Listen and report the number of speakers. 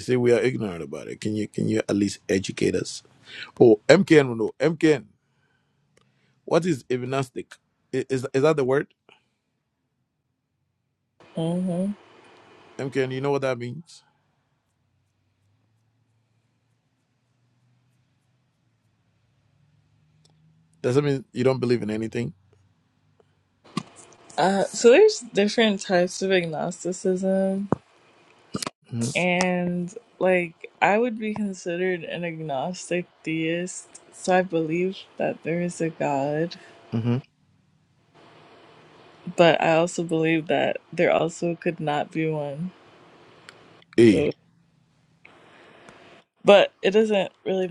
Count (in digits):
2